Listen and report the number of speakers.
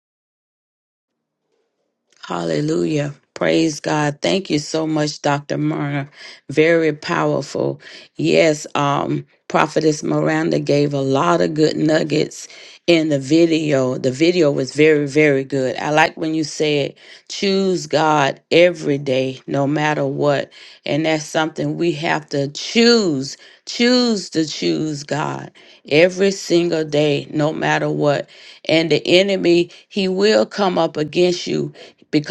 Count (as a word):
one